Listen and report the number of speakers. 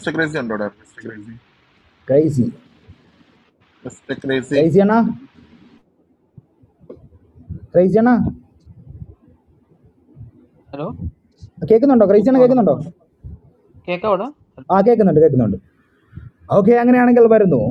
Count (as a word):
three